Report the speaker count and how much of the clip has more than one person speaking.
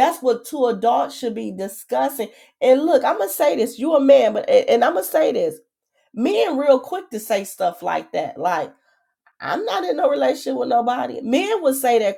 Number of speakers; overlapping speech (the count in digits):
1, no overlap